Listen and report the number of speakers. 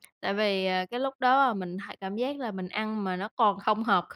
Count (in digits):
1